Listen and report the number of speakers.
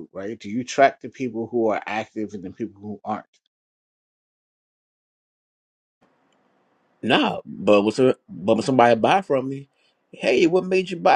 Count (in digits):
2